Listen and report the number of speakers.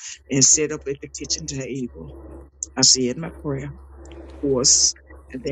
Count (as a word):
one